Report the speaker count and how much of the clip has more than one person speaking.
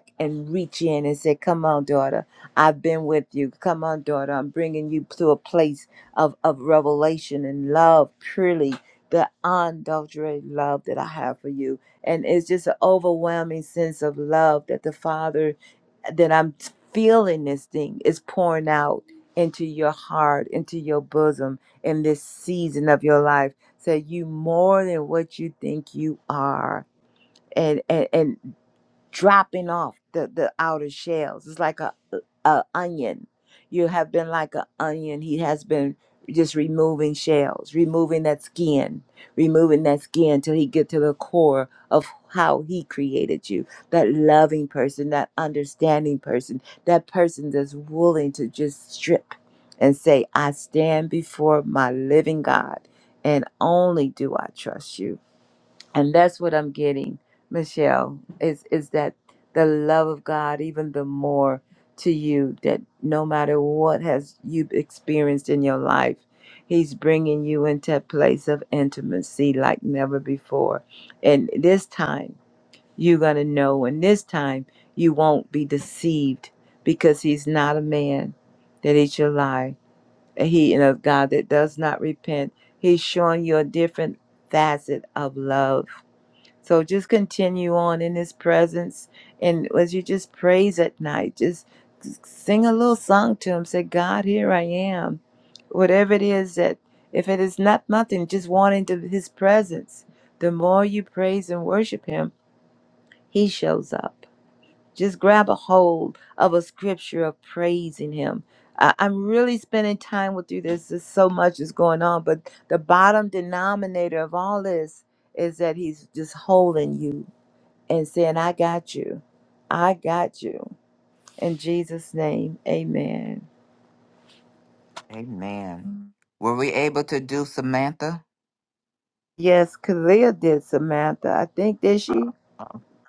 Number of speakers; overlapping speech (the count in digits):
2, no overlap